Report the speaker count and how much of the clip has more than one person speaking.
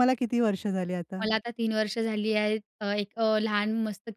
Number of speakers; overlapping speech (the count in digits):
2, about 1%